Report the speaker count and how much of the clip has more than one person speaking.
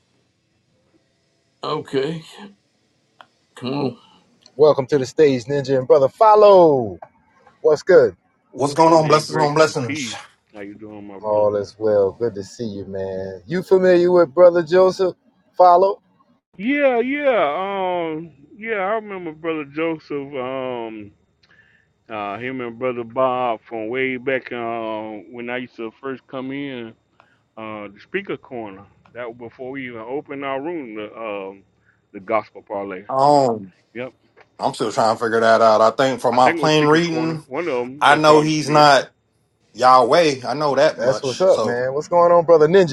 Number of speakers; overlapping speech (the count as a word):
four, about 10%